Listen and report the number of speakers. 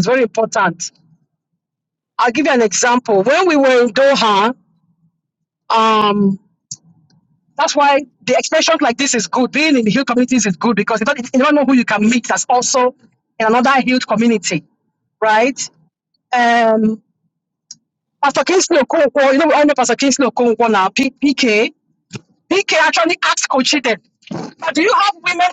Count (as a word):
one